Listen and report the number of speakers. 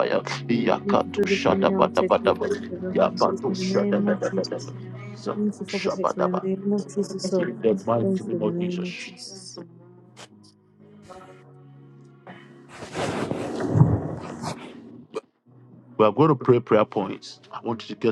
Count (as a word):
two